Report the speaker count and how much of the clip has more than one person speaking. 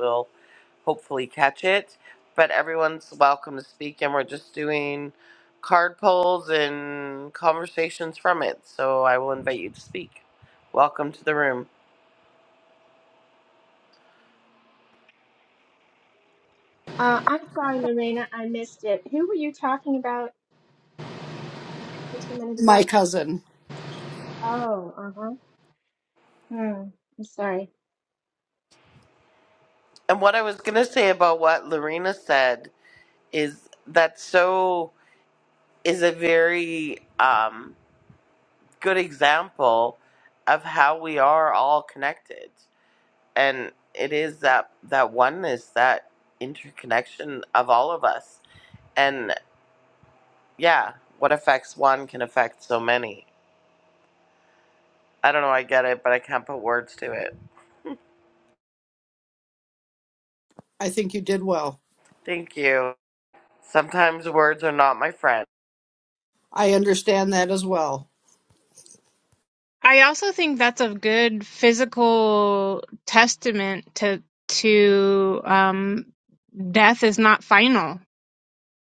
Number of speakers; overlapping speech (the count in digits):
4, under 1%